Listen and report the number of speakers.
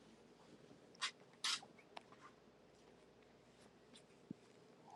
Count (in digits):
0